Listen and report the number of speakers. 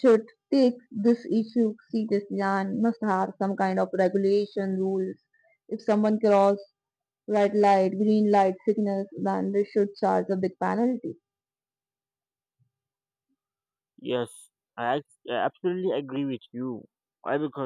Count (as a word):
two